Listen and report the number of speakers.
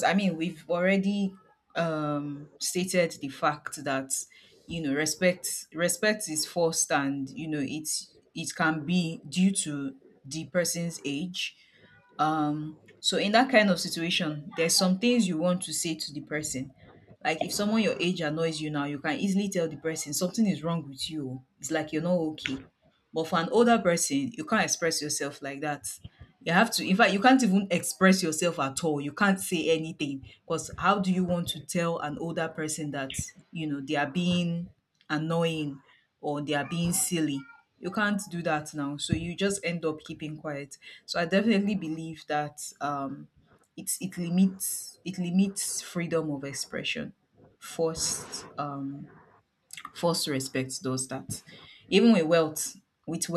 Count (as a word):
one